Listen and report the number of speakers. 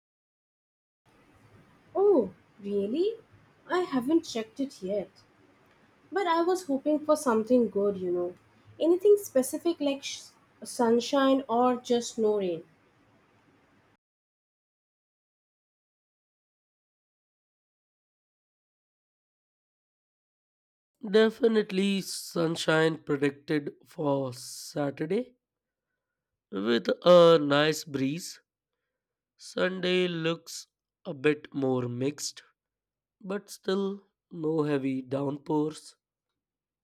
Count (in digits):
2